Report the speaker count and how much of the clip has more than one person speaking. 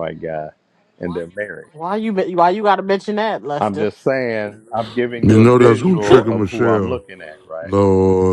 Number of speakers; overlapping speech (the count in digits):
3, about 25%